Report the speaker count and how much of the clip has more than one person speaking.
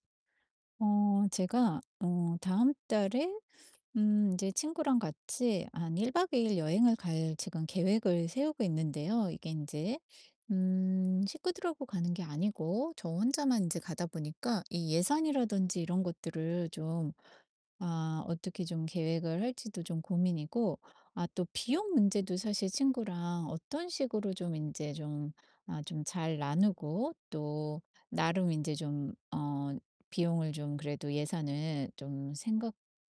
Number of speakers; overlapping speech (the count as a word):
one, no overlap